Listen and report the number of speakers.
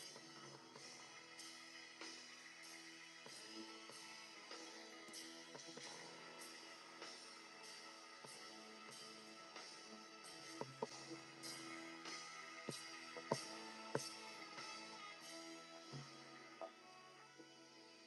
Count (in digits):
0